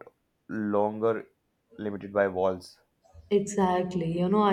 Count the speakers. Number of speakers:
2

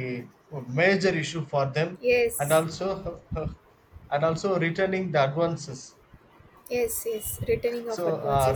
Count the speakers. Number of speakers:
2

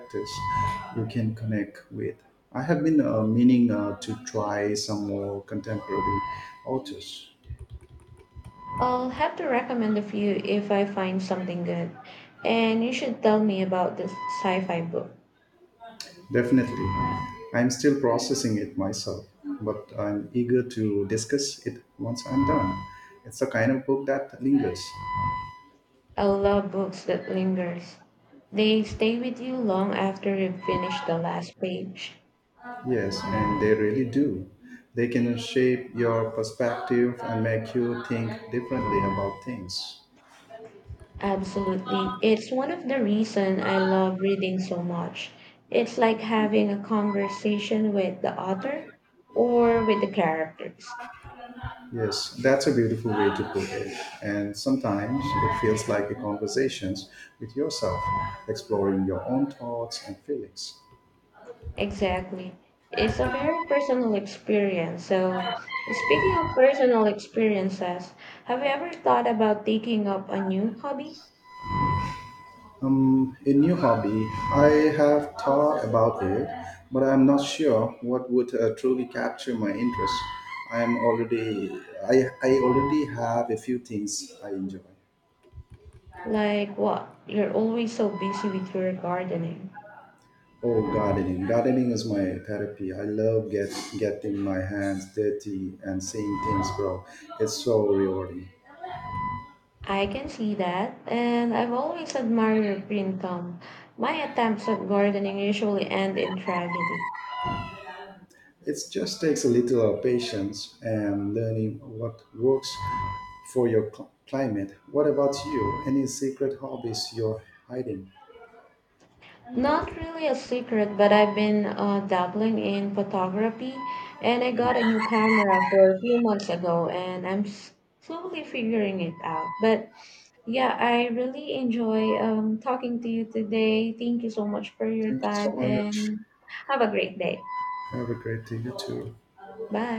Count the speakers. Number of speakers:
2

